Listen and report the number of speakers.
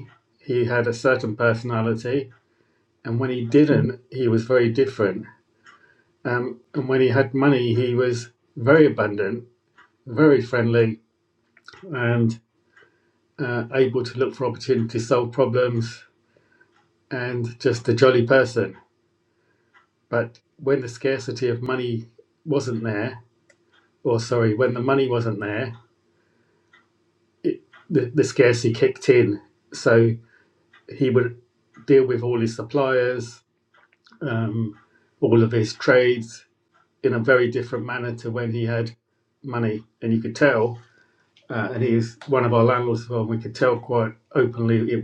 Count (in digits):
1